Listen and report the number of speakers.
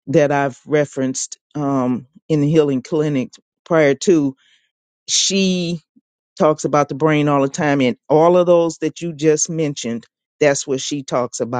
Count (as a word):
one